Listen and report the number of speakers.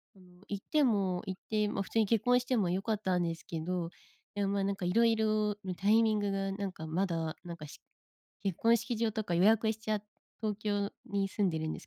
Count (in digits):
1